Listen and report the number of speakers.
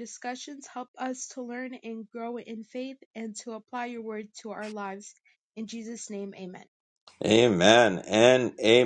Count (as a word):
two